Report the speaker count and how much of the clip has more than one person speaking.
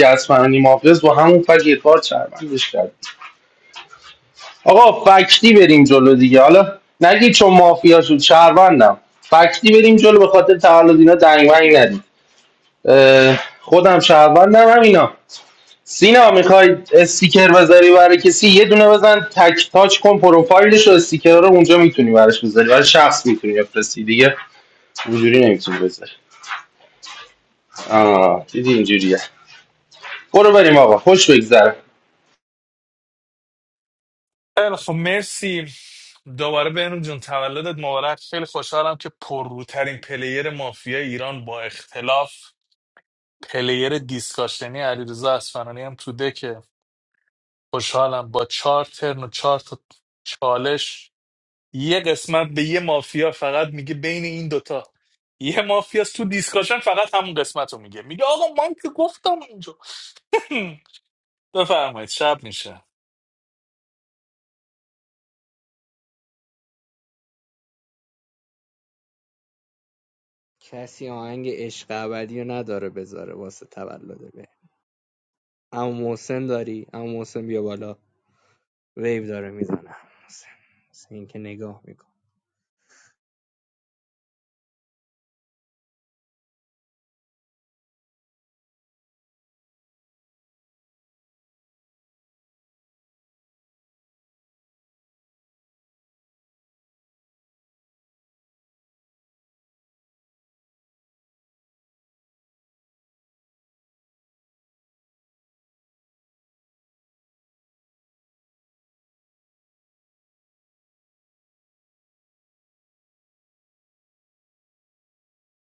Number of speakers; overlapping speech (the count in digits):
3, no overlap